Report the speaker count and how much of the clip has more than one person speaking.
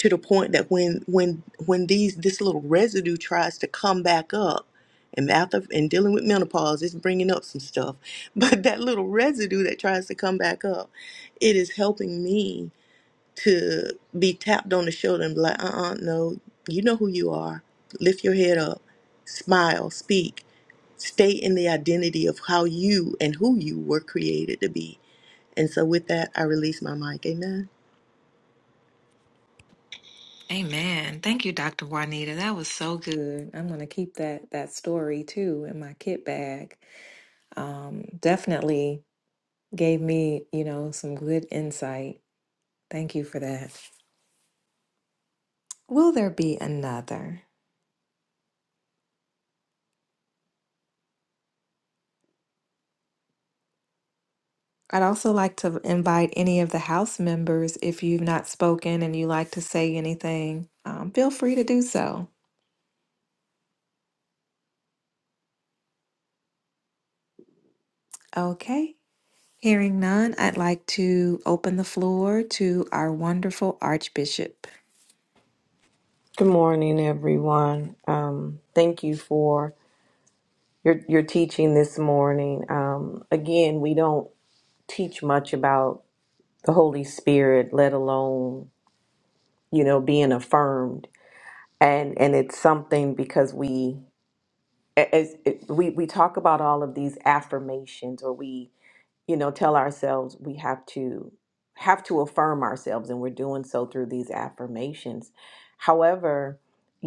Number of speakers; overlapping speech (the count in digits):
3, no overlap